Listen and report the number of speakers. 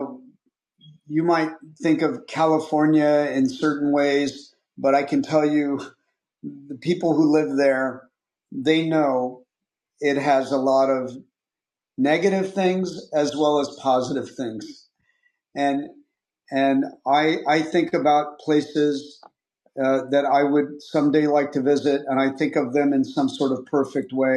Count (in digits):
1